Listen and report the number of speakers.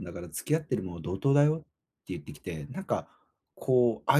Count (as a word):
one